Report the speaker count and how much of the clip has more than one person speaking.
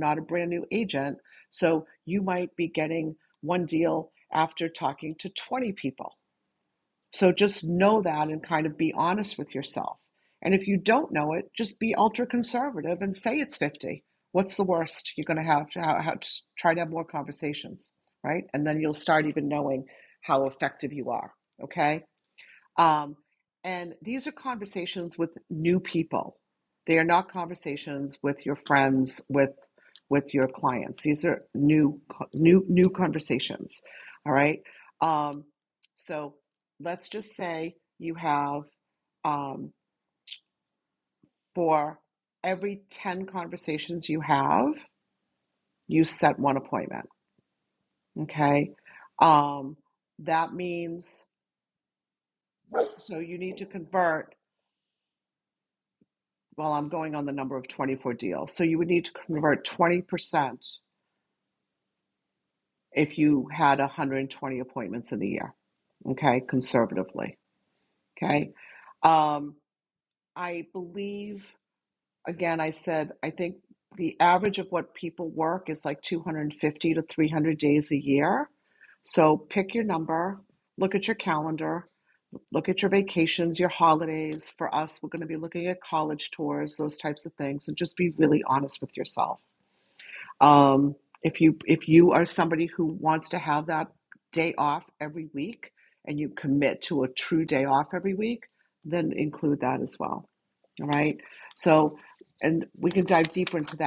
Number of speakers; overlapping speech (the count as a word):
one, no overlap